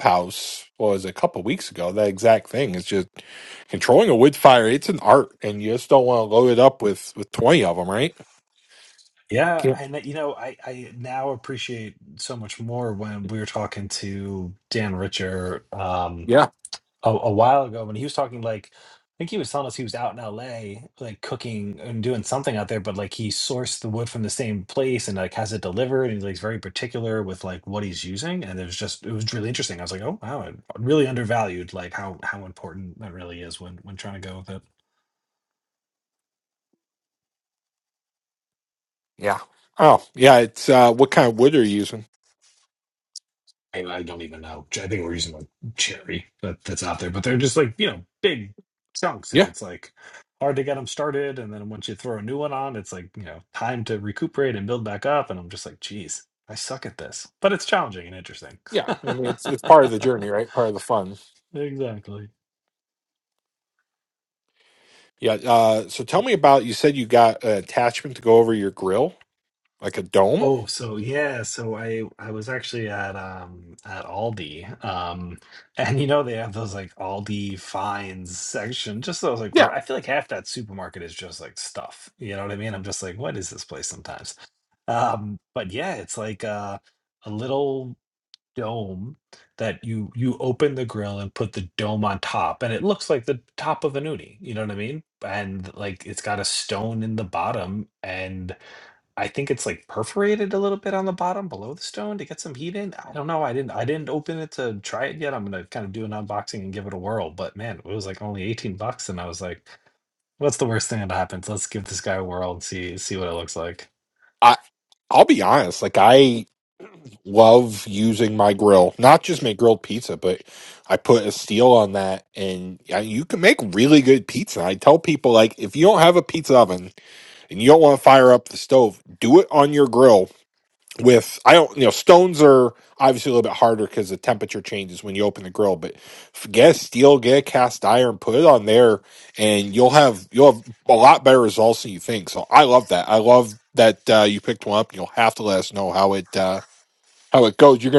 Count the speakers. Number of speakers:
2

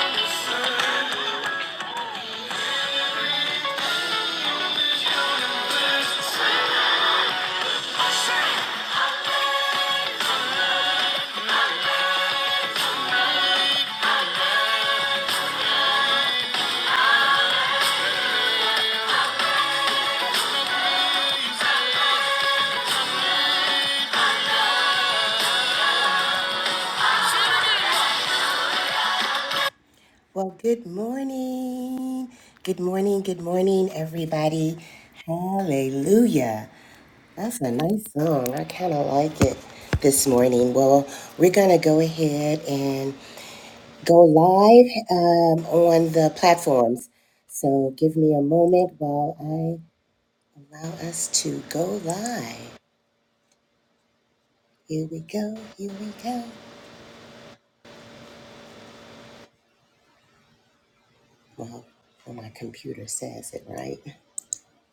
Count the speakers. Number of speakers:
1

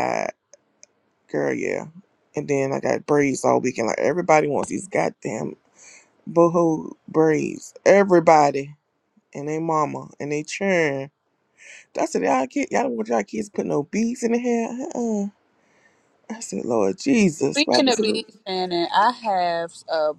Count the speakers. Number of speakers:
2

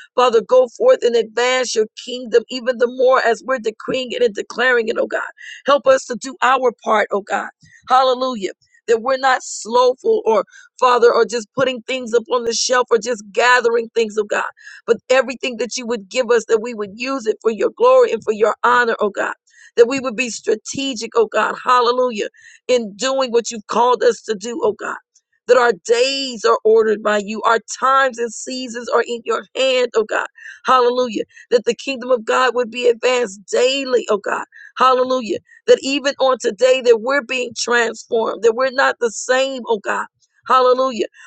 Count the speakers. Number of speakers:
1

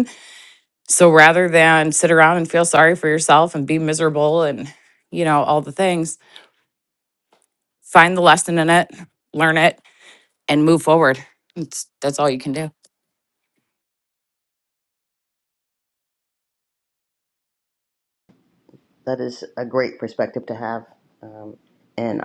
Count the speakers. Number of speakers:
2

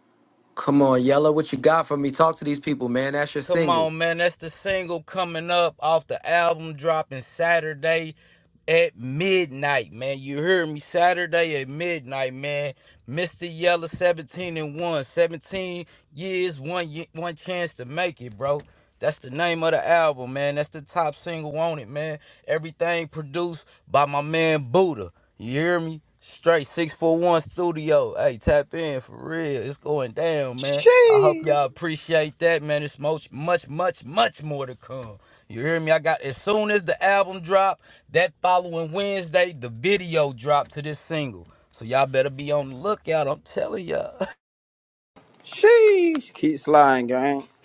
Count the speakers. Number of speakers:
3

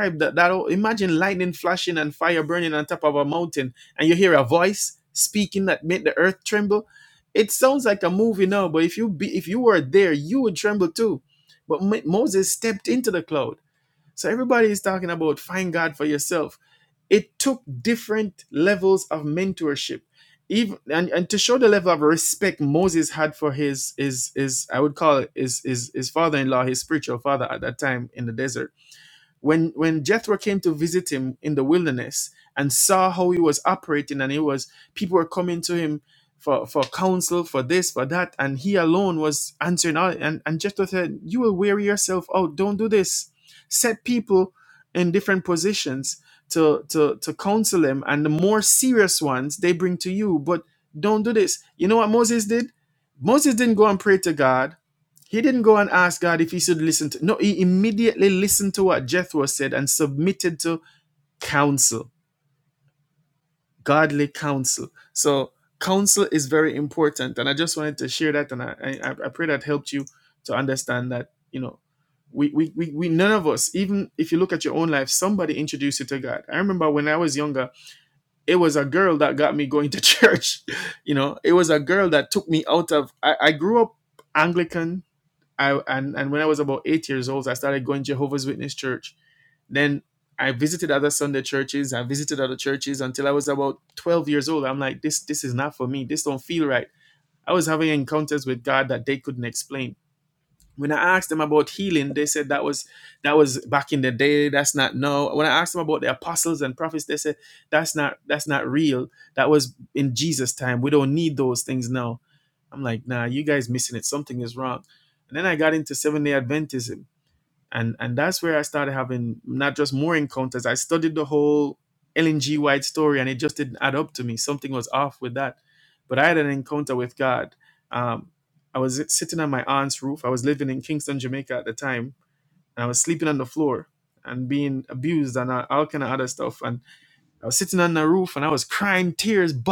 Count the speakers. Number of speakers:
1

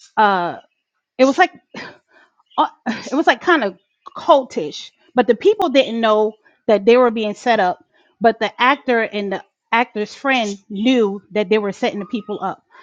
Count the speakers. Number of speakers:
1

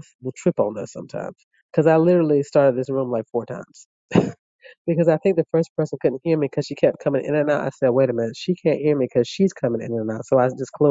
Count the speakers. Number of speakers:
1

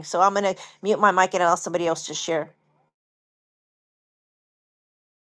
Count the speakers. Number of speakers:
1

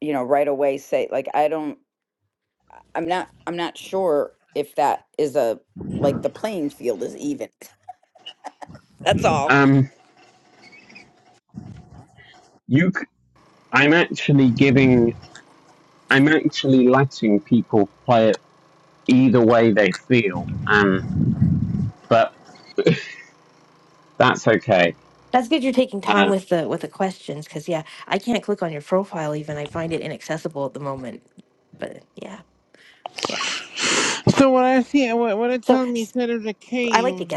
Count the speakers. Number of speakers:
4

